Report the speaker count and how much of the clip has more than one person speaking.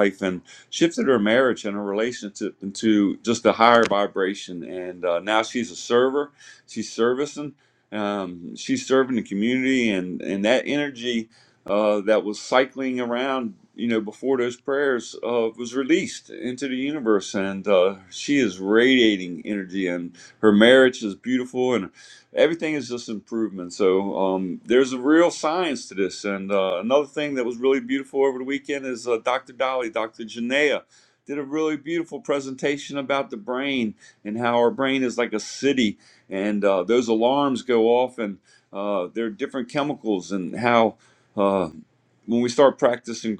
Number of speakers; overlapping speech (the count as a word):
one, no overlap